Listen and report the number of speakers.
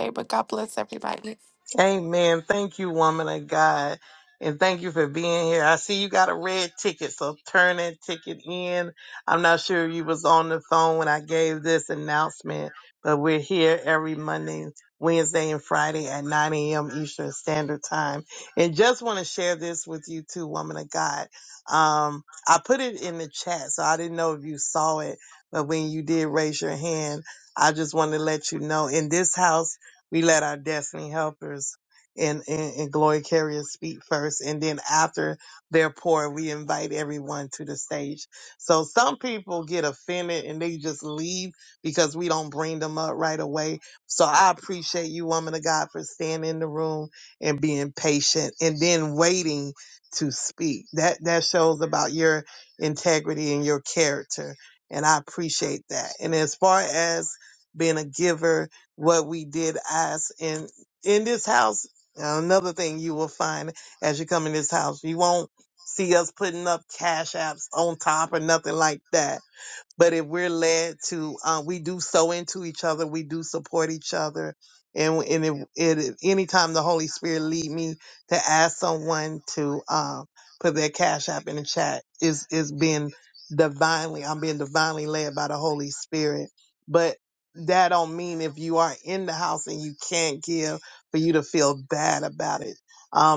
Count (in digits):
2